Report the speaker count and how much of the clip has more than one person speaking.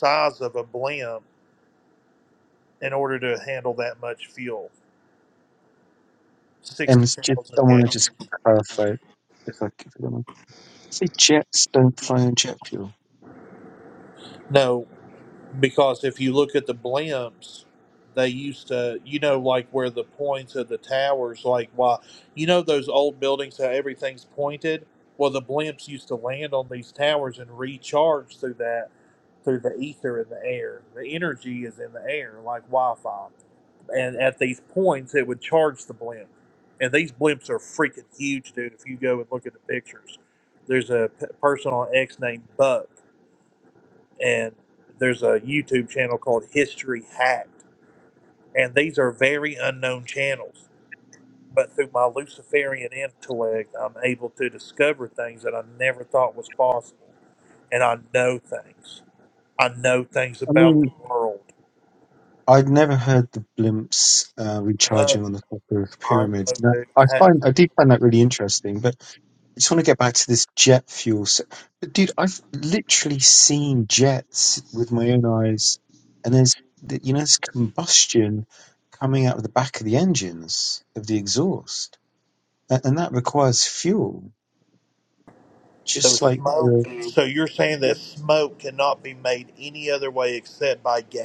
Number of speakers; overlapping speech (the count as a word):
two, about 4%